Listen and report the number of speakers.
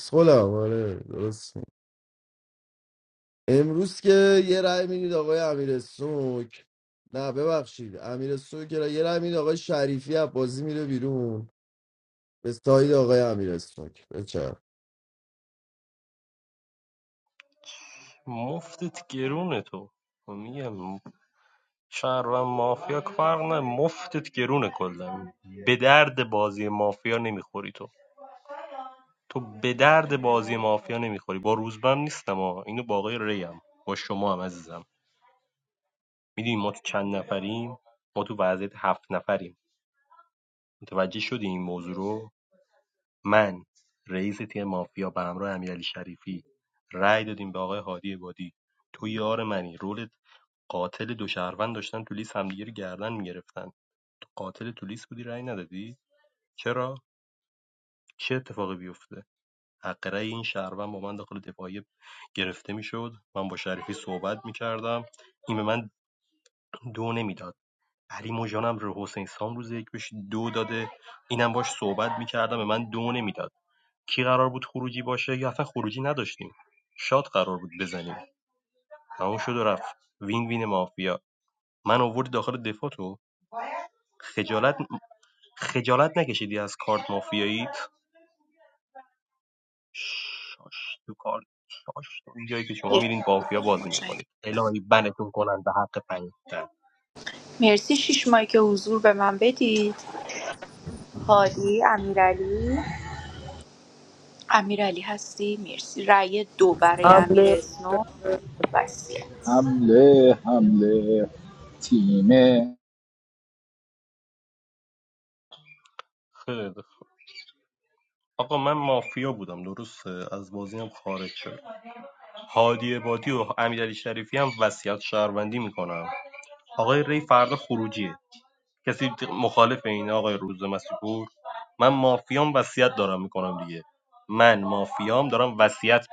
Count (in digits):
4